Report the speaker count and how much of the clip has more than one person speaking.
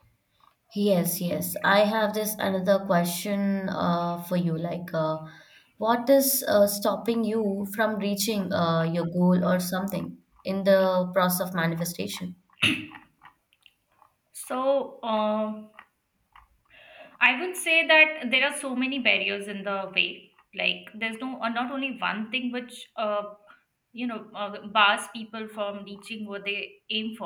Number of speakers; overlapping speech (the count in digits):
2, no overlap